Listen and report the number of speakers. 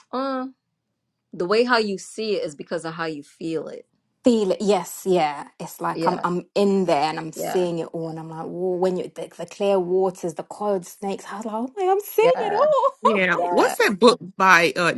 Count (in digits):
3